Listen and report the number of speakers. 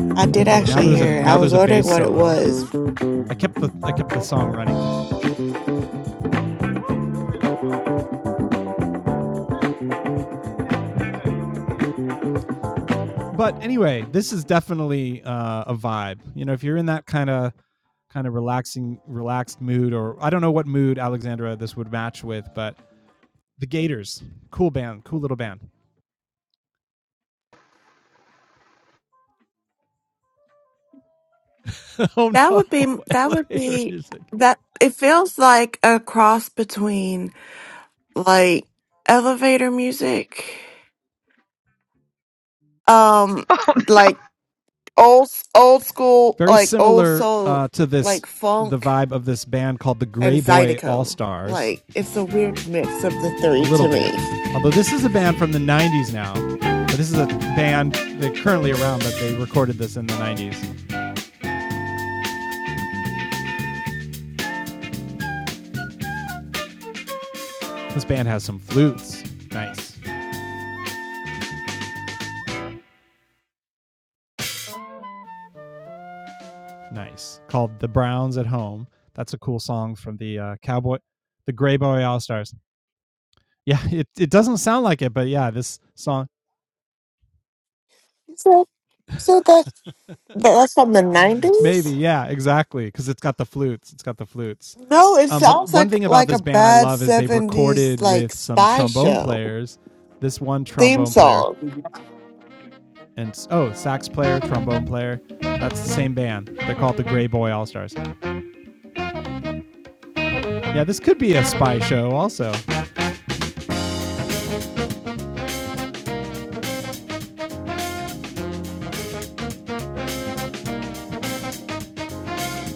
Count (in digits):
2